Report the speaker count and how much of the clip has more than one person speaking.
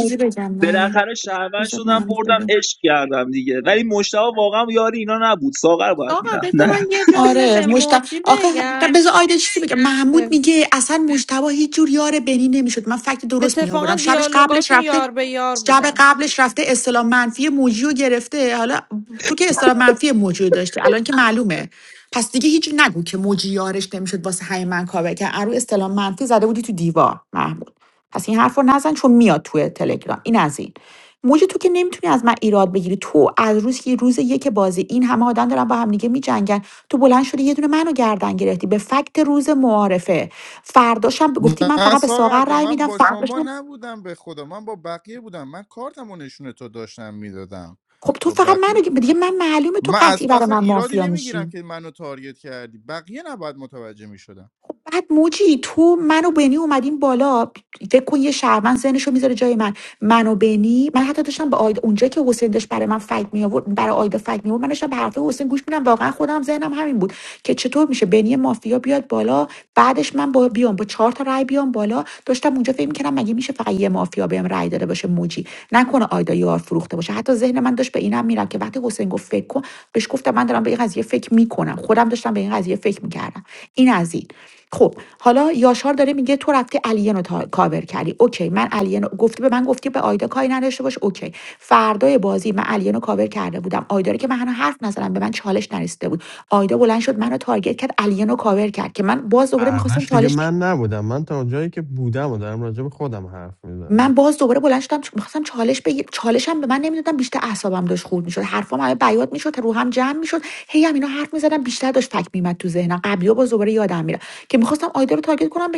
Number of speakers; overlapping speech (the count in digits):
5, about 9%